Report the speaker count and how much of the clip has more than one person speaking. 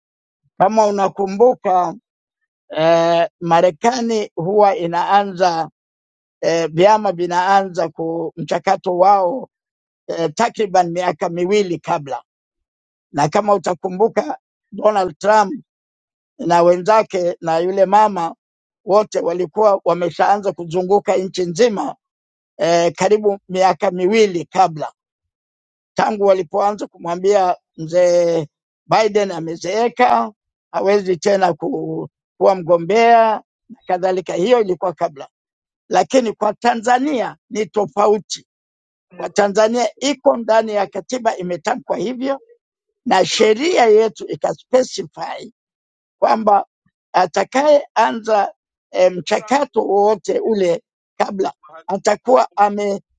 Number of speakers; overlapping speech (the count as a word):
one, no overlap